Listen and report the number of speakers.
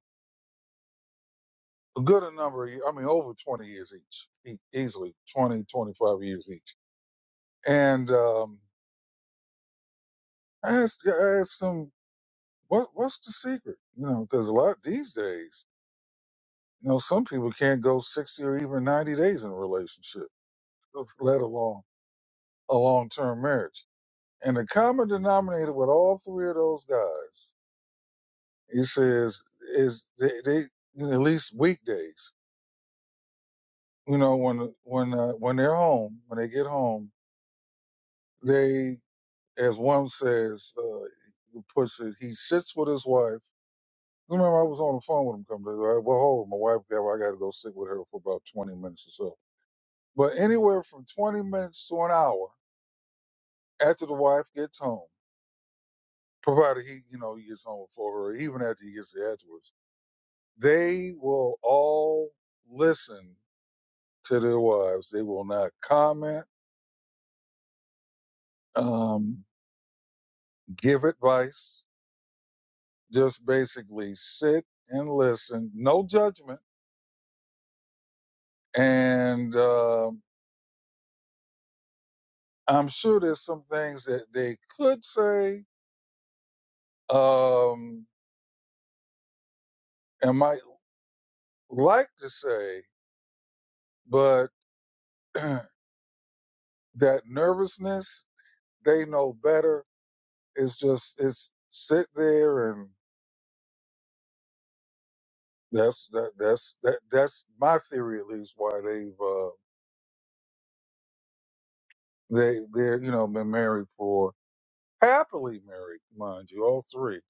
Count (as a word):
one